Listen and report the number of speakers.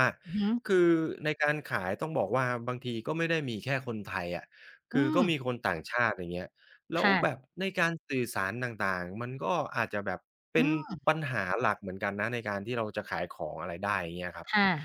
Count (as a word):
two